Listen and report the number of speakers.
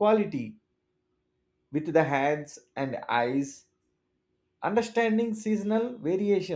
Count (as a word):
one